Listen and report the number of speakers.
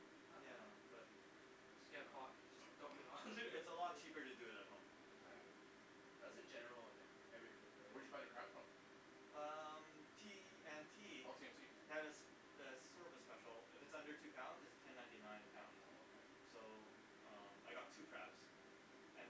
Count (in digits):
3